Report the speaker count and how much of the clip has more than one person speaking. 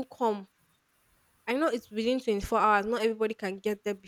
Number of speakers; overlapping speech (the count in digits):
1, no overlap